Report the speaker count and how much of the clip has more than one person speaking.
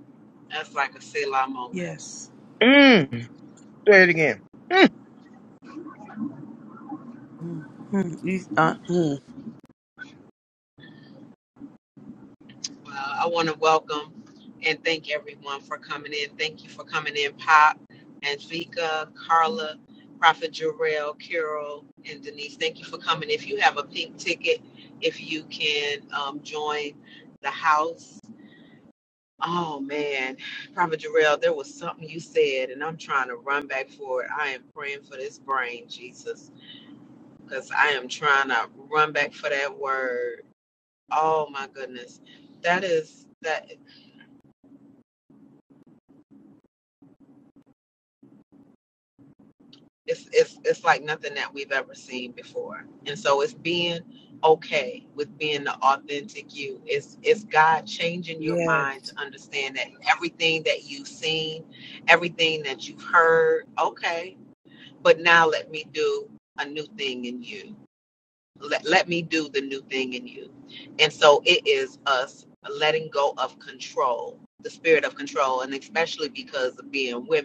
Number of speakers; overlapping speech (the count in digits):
3, about 1%